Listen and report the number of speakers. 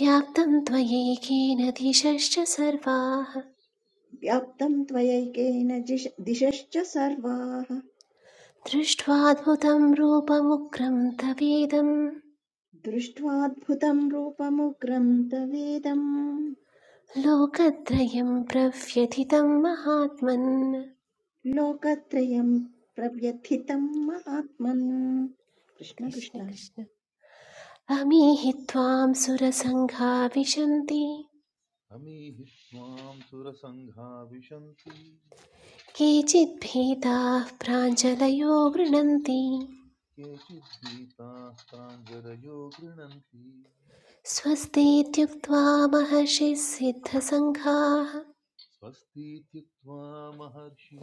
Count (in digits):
3